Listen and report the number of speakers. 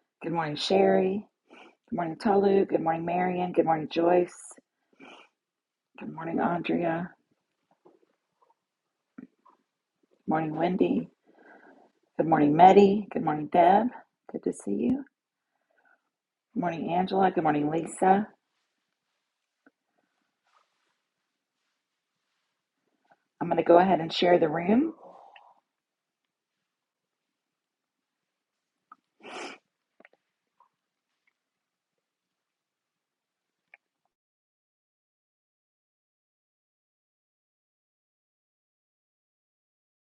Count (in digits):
1